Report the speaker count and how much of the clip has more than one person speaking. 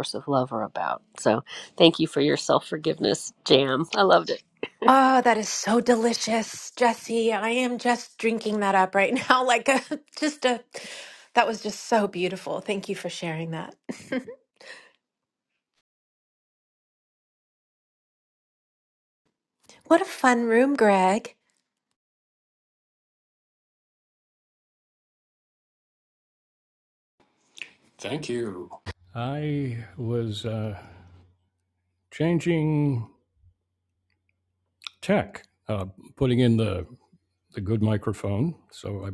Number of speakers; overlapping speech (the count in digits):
3, no overlap